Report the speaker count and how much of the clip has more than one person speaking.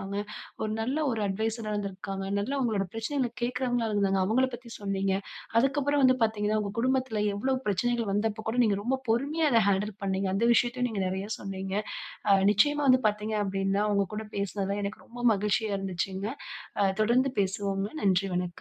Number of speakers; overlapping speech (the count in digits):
1, no overlap